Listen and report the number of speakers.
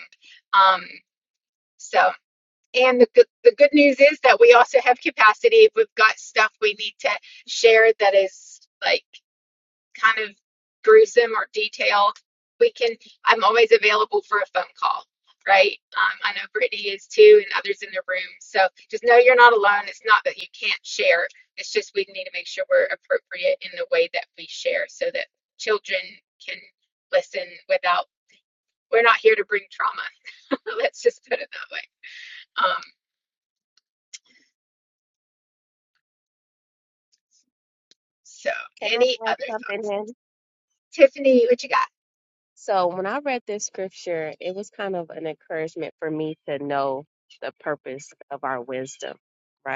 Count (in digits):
2